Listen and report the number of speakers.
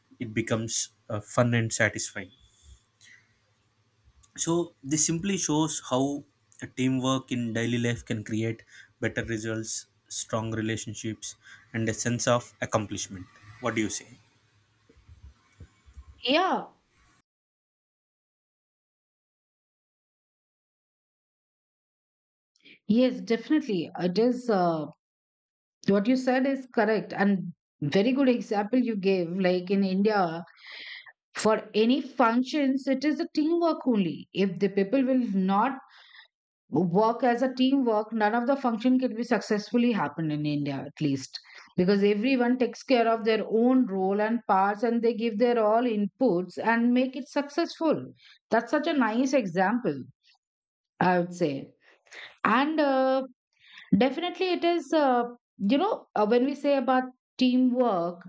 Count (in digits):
2